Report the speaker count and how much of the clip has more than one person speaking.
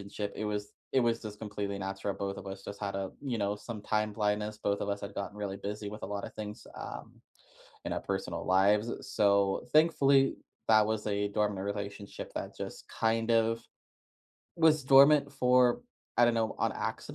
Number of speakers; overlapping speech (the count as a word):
one, no overlap